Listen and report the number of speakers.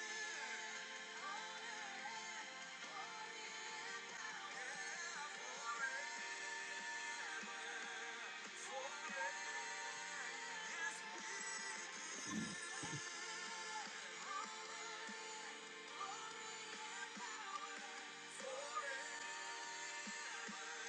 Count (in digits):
0